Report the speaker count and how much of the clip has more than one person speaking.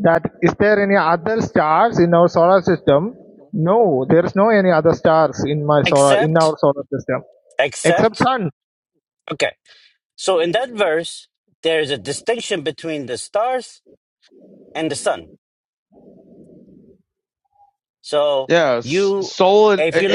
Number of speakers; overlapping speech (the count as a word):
three, about 7%